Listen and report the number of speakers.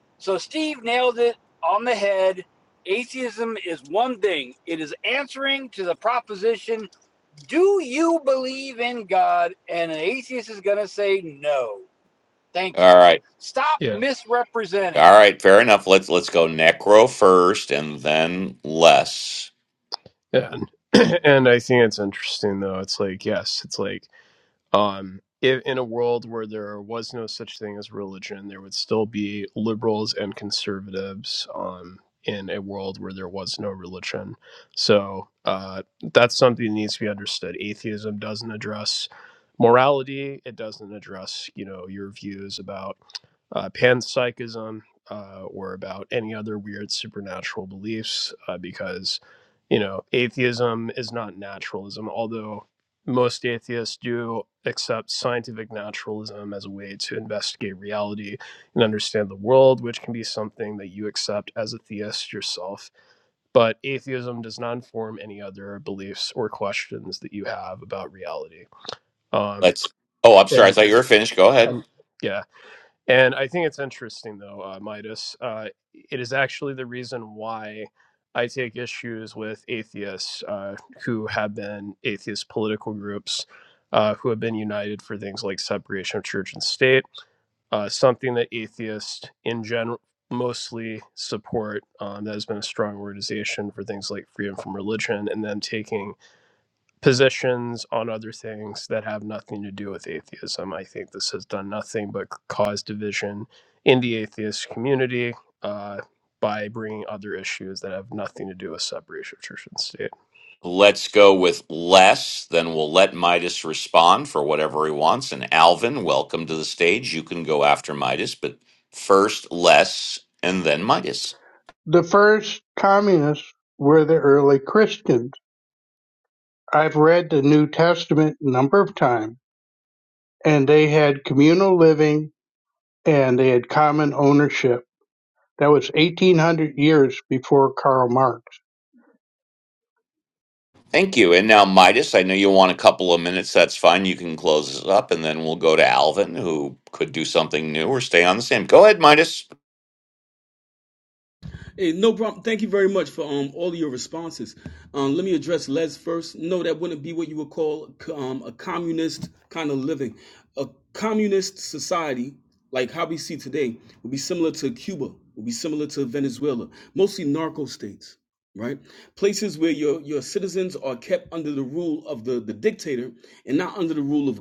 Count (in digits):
5